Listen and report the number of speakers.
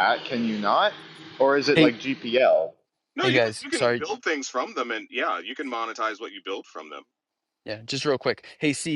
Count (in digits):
3